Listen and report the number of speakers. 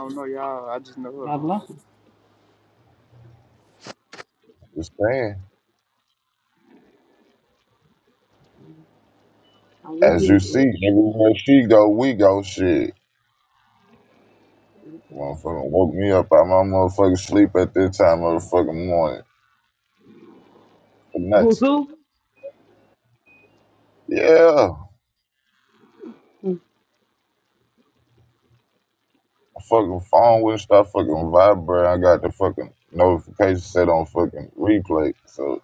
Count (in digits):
3